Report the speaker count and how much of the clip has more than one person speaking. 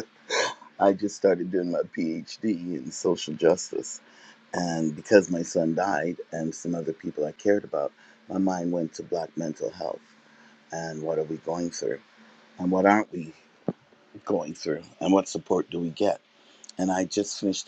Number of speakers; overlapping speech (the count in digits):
1, no overlap